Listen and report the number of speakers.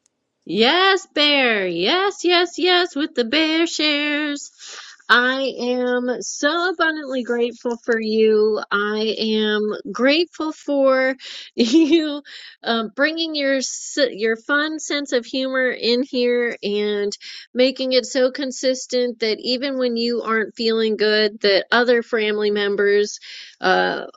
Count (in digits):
1